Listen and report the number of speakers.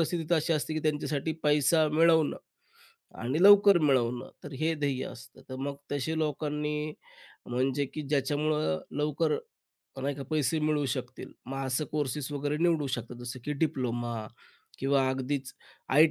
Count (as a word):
one